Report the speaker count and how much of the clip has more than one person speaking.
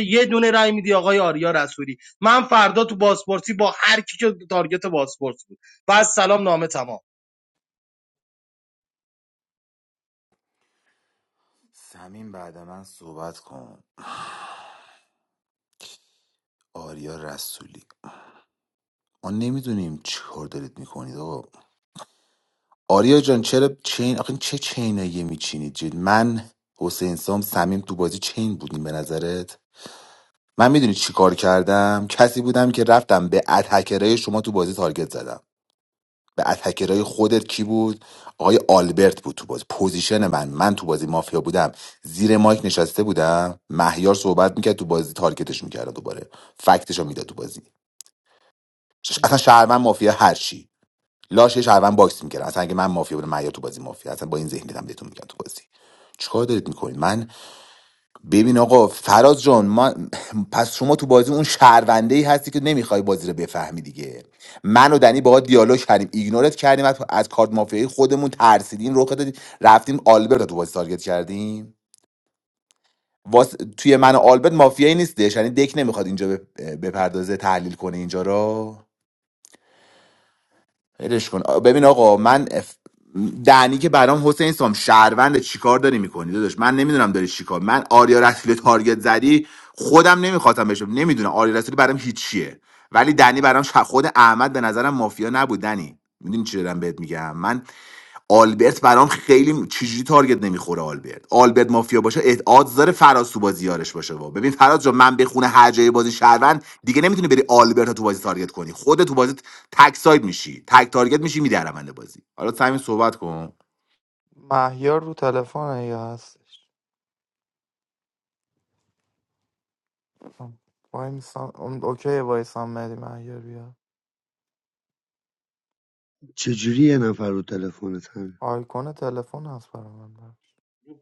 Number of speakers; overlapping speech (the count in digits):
4, no overlap